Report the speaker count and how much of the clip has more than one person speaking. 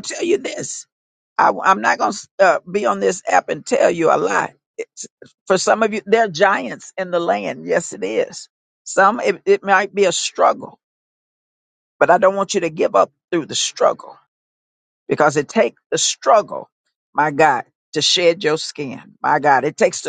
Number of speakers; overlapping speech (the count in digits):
1, no overlap